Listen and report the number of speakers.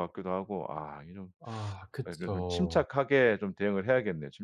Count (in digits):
2